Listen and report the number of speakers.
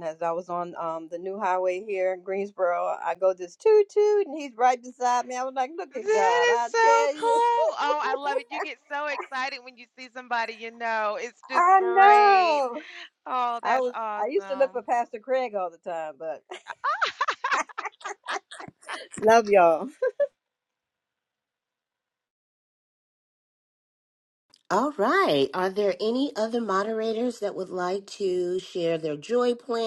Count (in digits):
3